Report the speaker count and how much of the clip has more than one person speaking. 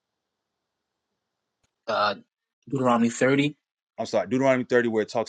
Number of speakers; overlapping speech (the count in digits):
2, no overlap